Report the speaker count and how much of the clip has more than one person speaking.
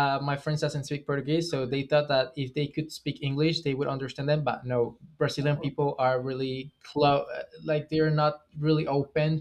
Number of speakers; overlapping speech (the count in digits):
1, no overlap